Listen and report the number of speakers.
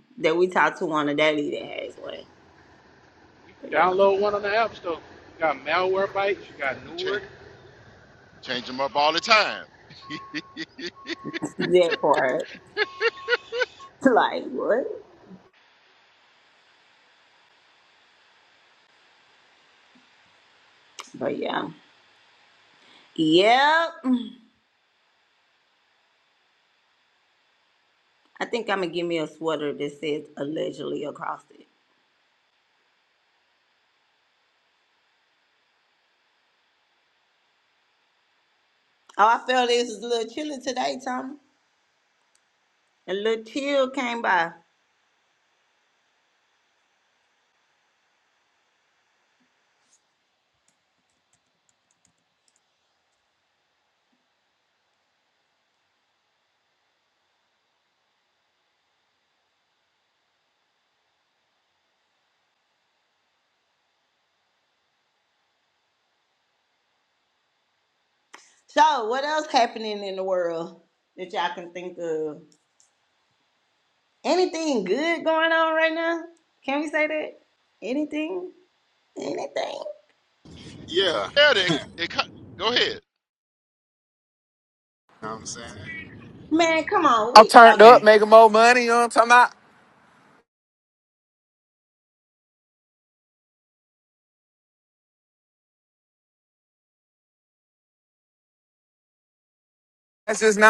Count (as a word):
five